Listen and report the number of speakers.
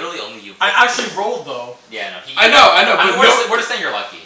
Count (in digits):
3